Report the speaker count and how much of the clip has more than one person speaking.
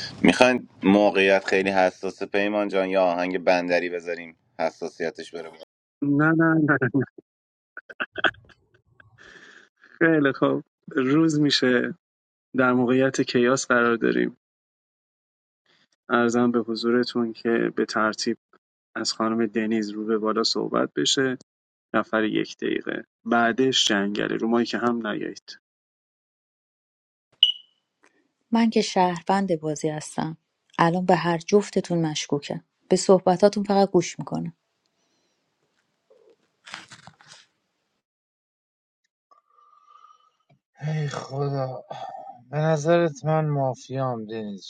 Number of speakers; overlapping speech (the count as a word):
four, no overlap